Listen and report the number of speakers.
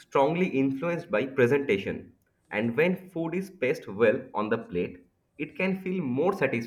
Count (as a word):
one